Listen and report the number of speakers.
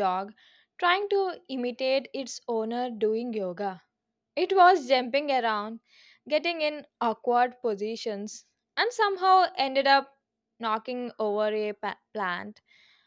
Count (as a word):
one